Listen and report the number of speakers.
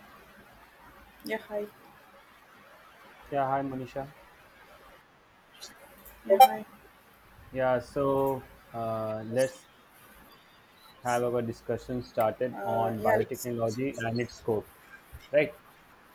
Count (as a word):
two